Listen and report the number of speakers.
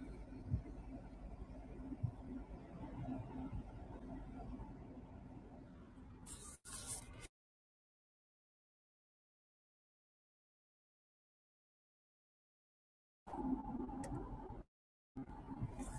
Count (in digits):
0